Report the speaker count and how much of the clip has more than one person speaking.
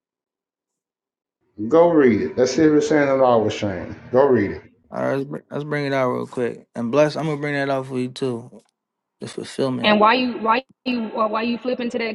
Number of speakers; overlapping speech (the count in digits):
3, under 1%